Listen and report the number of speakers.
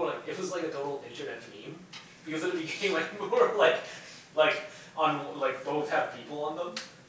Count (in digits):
1